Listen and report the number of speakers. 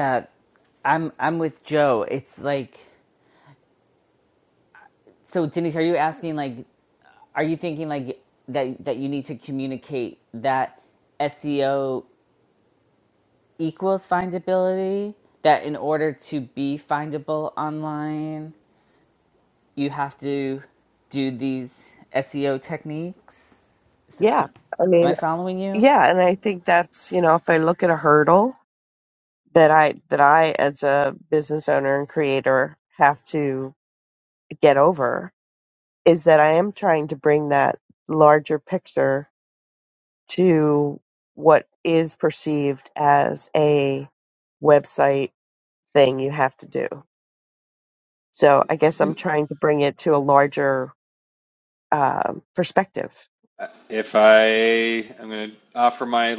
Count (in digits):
3